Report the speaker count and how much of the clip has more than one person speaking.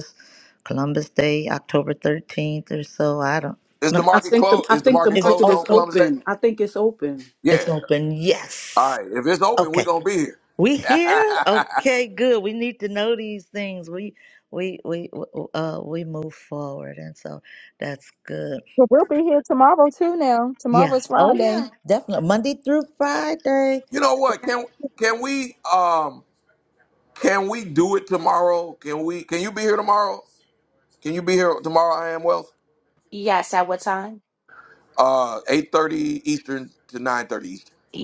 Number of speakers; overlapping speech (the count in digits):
5, about 10%